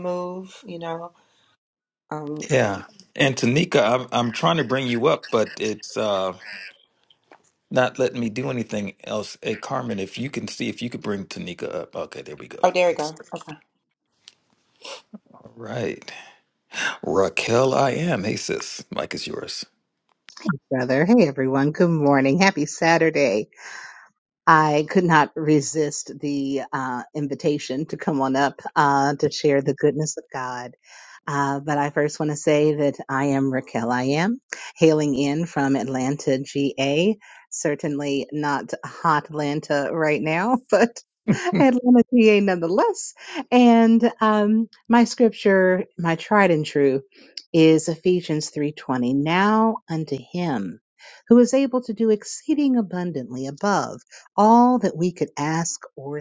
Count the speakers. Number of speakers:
three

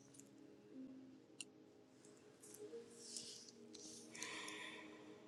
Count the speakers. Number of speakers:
zero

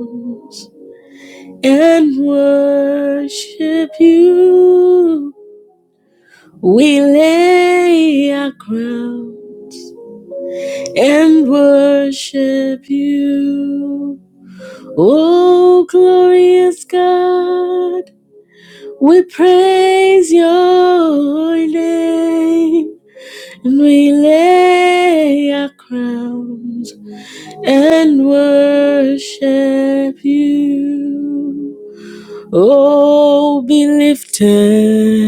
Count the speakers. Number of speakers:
one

